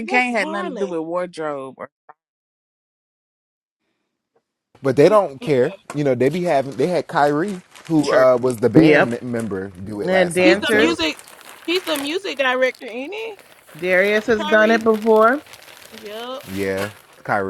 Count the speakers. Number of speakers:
4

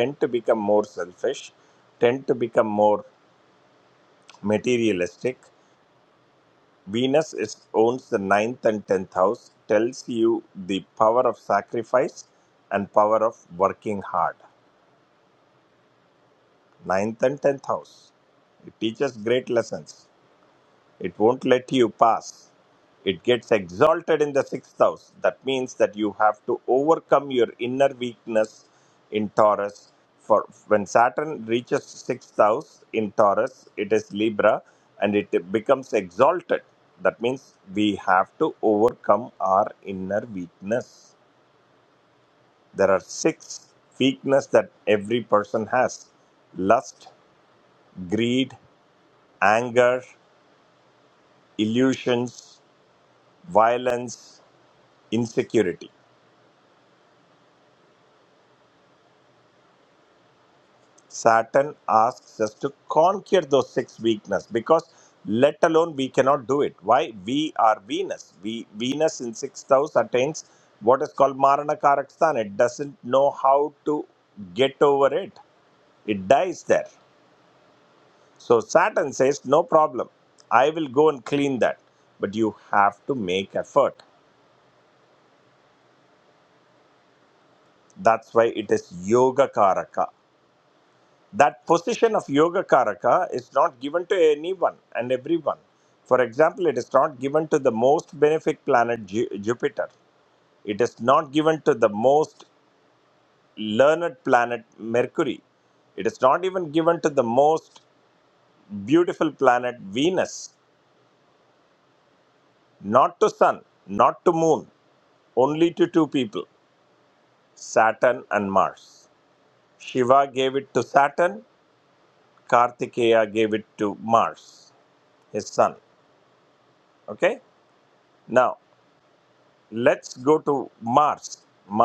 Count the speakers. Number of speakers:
1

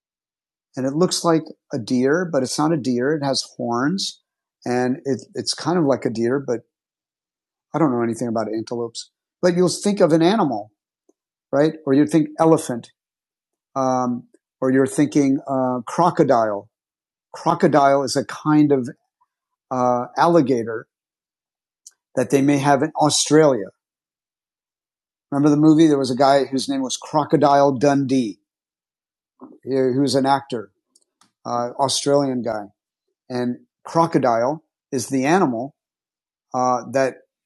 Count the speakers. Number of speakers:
1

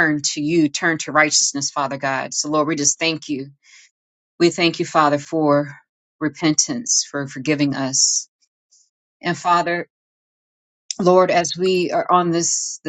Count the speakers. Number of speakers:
1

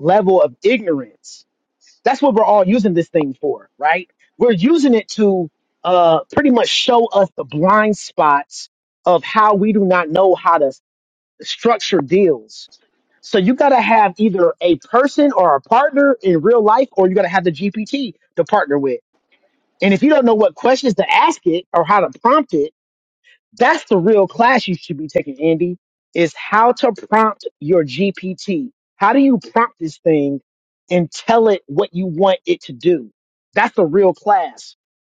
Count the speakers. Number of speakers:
1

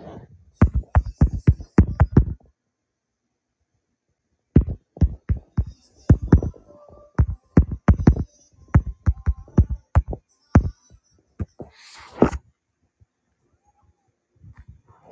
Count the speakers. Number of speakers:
0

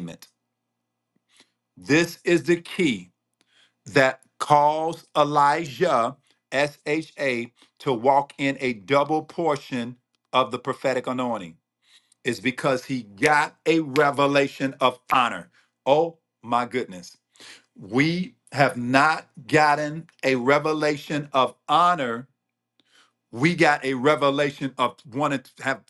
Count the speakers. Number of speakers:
1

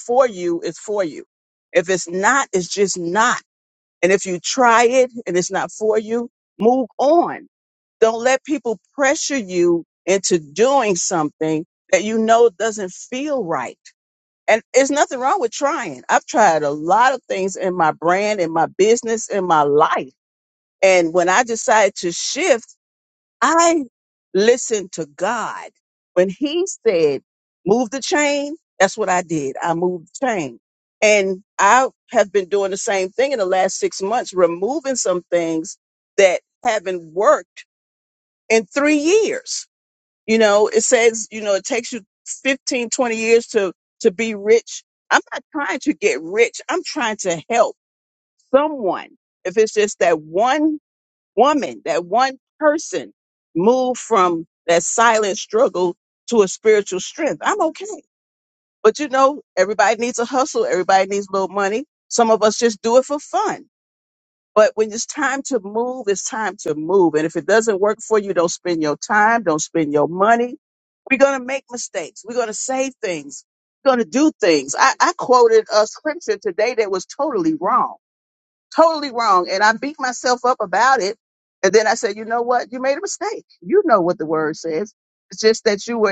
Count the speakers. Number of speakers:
1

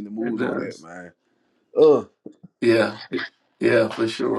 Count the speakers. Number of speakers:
2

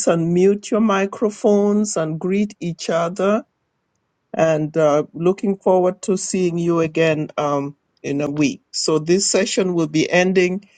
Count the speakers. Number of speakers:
1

